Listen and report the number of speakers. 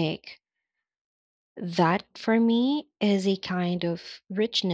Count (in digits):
1